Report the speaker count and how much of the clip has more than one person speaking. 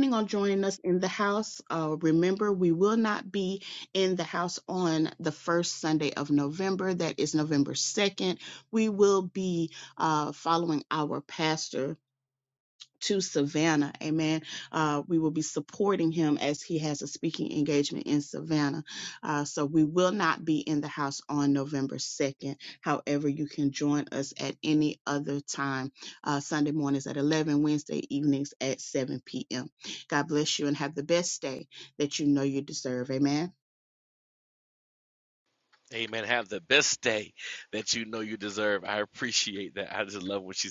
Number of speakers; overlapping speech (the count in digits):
2, no overlap